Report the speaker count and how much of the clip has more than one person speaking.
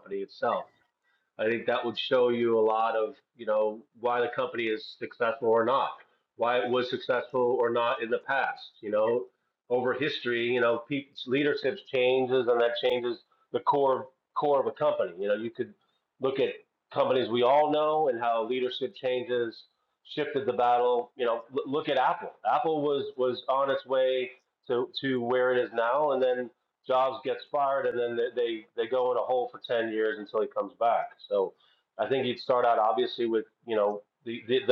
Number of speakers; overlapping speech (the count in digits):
1, no overlap